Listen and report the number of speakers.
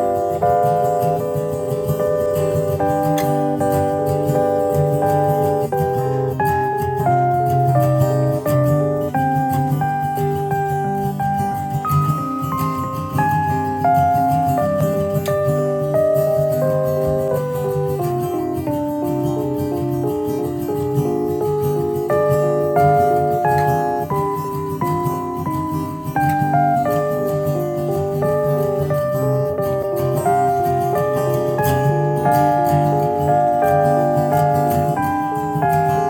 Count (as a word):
zero